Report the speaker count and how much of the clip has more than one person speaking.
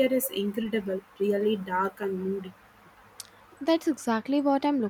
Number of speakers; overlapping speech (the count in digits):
2, no overlap